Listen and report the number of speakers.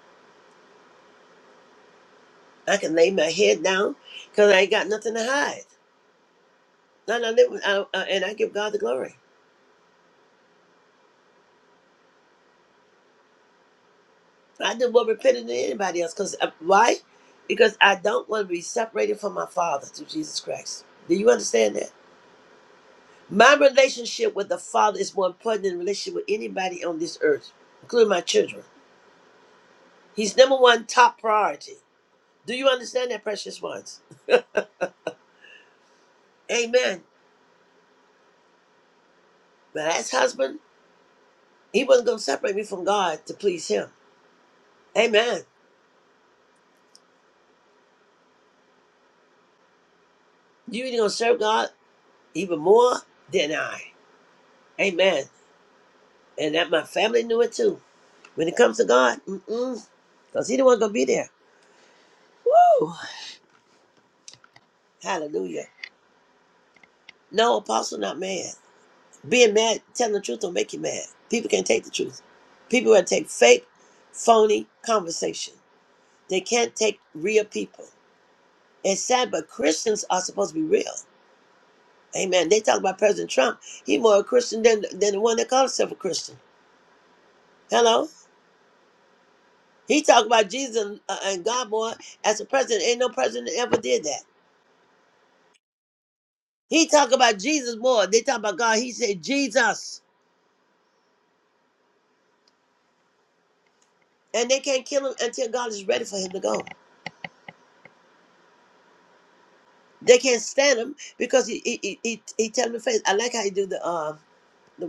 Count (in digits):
1